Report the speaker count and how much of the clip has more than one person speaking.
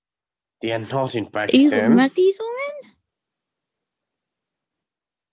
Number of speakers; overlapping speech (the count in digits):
2, about 12%